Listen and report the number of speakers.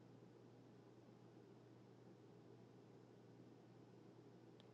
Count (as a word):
zero